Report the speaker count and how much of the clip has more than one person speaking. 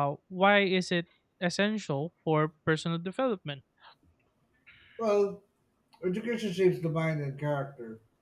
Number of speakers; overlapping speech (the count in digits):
2, no overlap